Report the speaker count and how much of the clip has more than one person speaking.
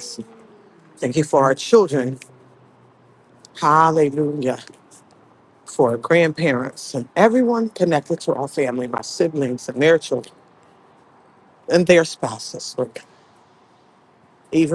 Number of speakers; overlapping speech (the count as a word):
one, no overlap